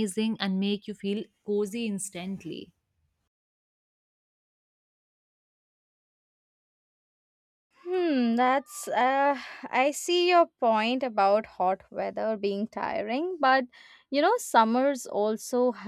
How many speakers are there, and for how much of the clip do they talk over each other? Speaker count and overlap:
2, no overlap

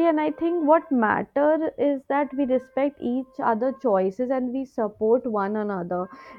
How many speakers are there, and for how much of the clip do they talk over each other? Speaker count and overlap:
1, no overlap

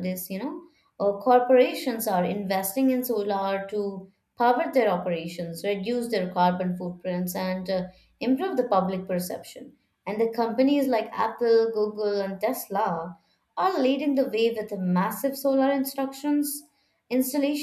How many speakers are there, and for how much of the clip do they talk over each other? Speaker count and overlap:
1, no overlap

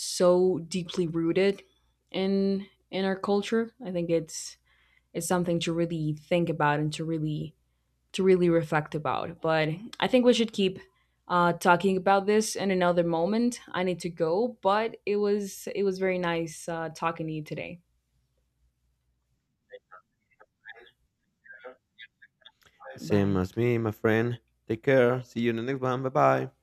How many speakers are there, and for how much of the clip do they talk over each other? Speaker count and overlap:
2, about 1%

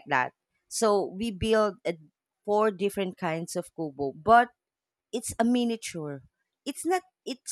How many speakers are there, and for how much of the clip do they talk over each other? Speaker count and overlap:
1, no overlap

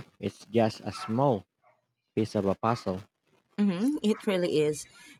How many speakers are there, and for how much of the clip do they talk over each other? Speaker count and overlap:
2, no overlap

